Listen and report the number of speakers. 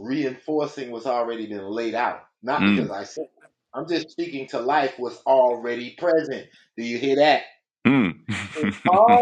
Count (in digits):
2